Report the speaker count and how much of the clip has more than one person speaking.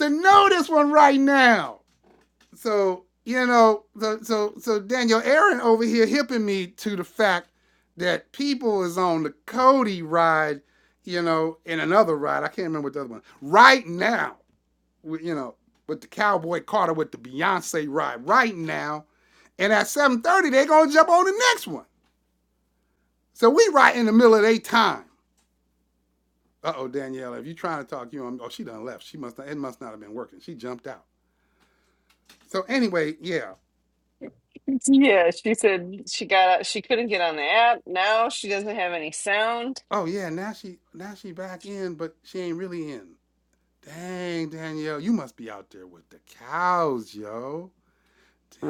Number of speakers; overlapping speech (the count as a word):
two, under 1%